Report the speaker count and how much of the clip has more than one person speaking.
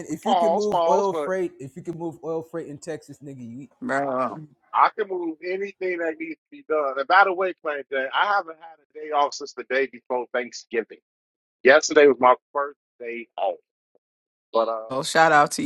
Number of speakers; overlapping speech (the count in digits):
3, about 9%